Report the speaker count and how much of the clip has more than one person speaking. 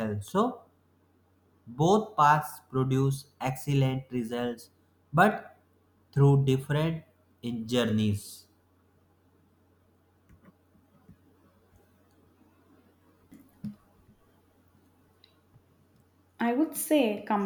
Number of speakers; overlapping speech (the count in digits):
2, no overlap